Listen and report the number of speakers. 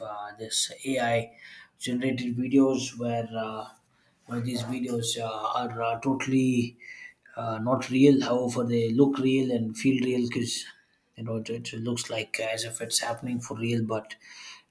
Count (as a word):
one